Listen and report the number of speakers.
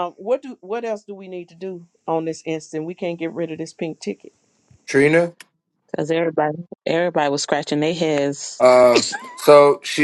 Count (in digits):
3